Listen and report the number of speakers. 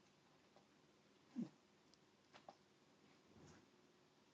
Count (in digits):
0